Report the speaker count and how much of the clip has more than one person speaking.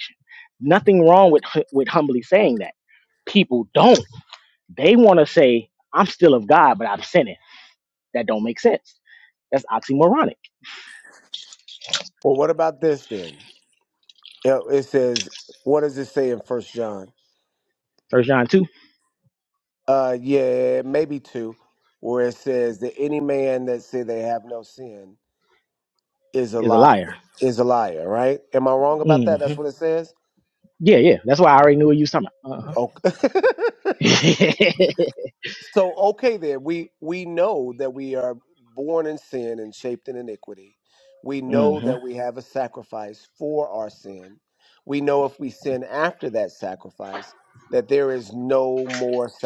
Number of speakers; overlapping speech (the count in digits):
2, about 2%